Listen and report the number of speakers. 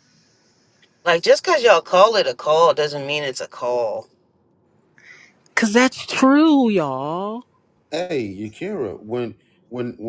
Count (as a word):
three